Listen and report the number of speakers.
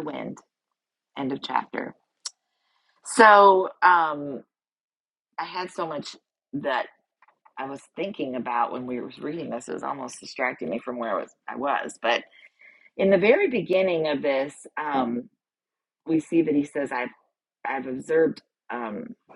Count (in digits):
1